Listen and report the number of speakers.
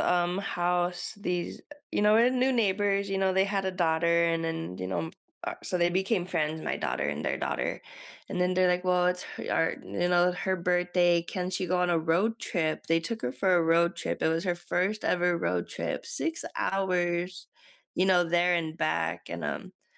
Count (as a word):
one